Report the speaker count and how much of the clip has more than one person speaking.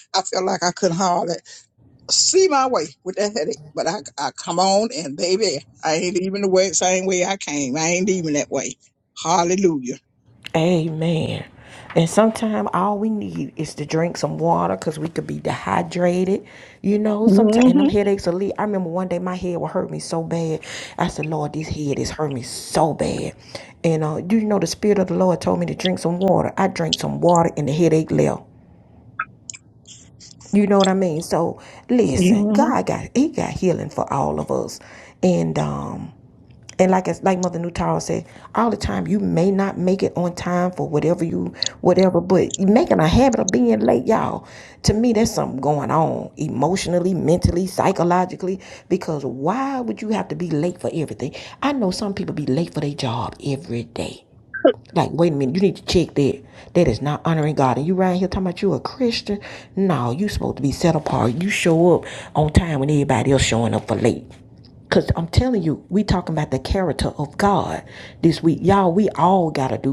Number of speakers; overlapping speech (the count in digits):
2, about 2%